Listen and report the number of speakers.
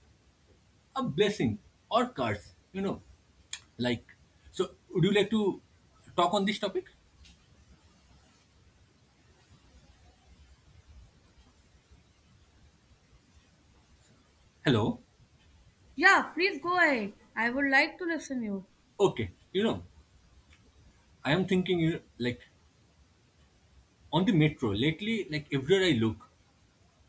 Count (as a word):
two